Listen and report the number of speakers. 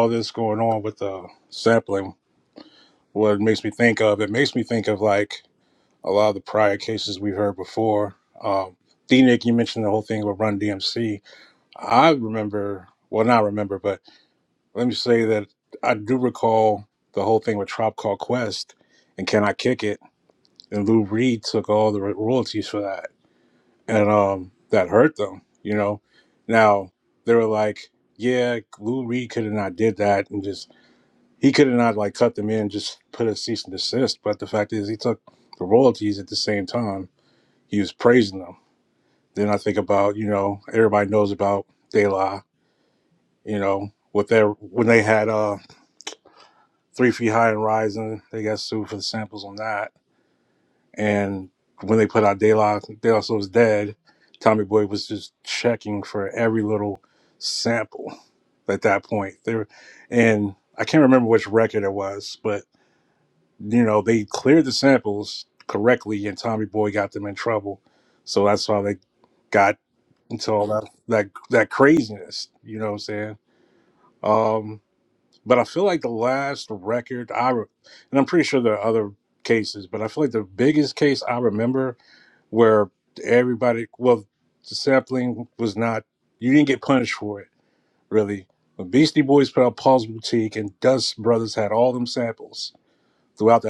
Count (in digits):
1